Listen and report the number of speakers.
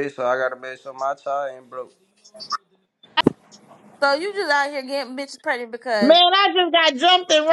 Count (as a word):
three